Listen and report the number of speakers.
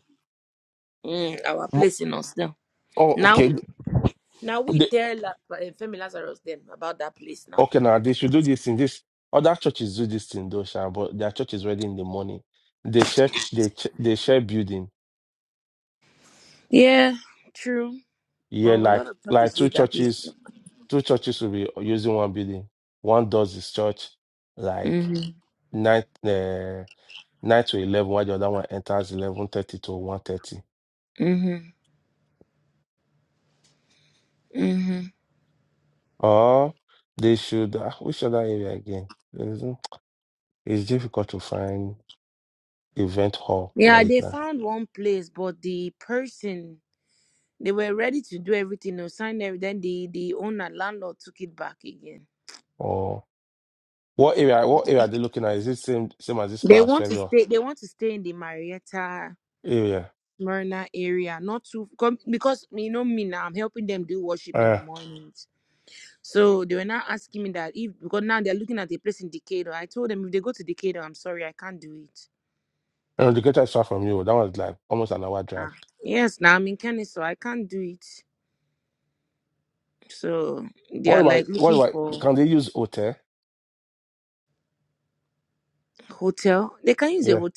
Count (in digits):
2